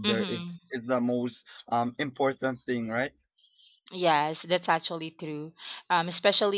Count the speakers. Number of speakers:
two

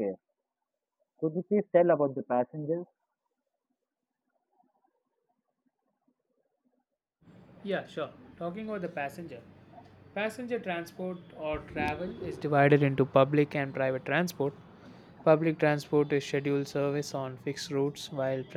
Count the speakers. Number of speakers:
two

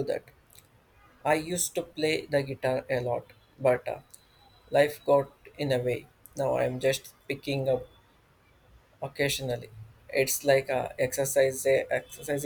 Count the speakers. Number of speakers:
one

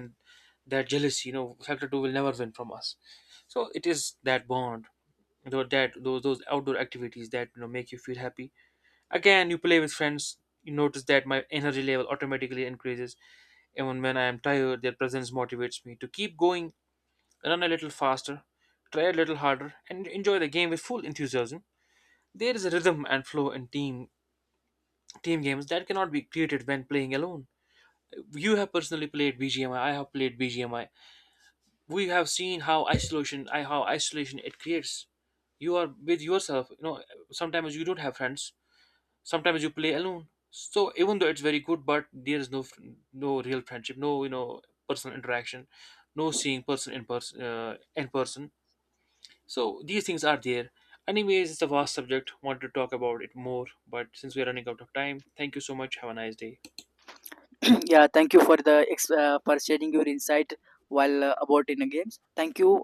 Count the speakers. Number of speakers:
two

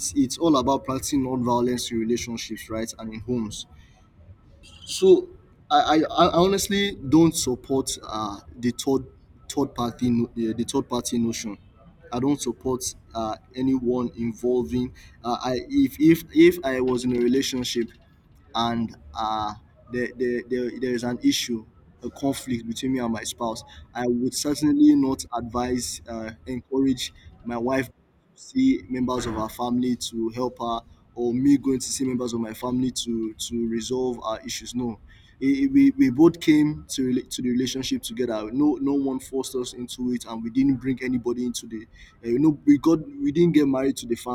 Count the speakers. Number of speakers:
one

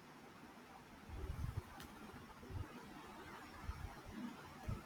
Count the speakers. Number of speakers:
zero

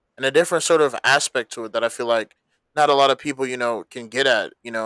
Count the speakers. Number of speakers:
one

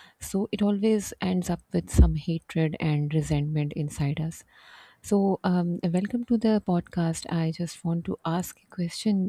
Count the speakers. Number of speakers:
one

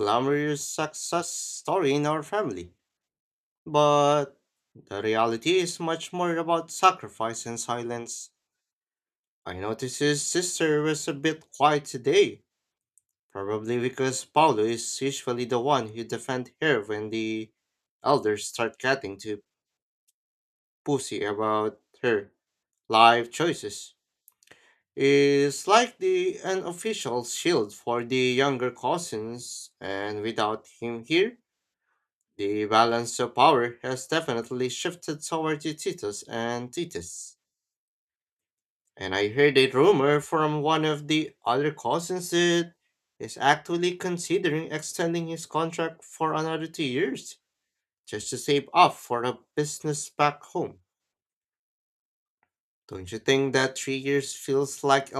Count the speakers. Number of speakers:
one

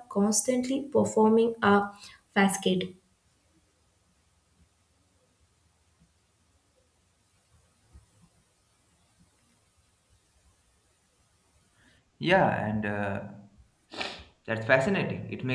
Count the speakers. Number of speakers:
two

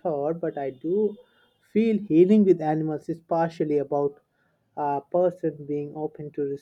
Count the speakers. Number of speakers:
one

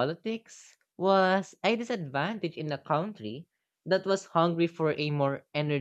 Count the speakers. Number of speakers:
one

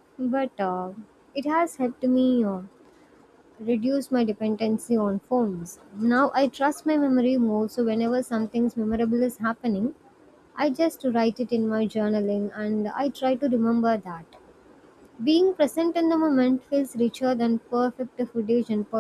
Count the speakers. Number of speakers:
one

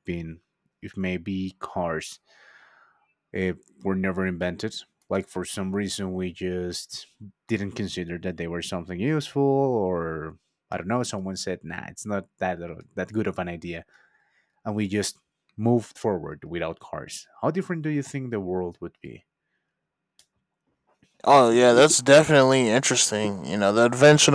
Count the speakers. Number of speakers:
two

